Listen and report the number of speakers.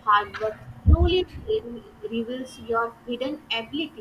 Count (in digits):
1